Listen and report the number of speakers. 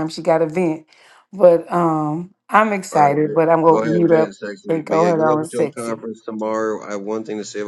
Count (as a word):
two